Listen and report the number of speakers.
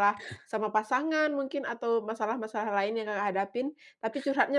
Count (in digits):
1